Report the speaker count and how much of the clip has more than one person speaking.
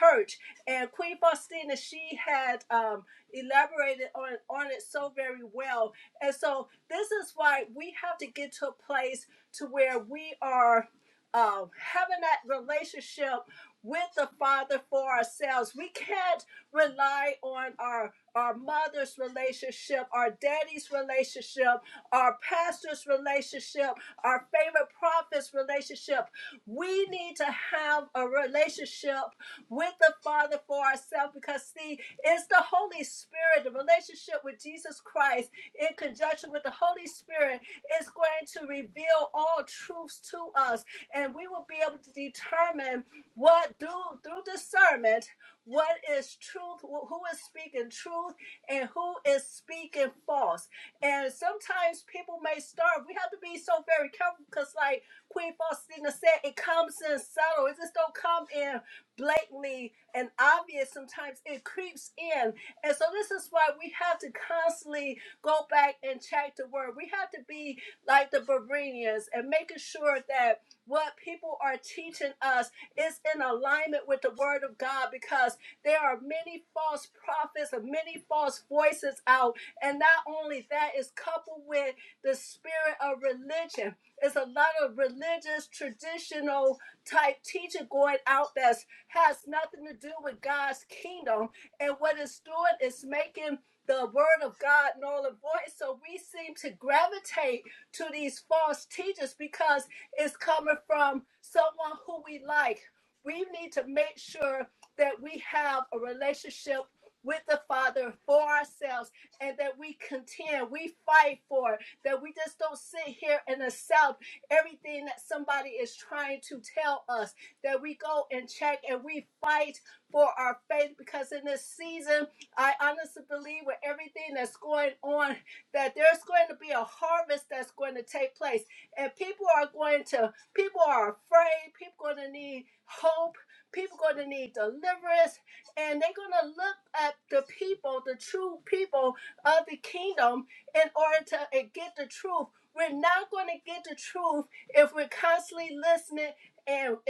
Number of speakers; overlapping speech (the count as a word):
one, no overlap